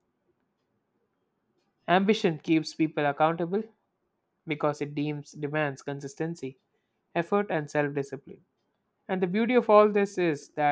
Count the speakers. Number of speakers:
one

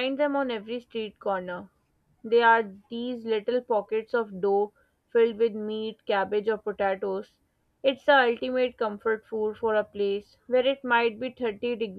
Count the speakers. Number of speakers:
one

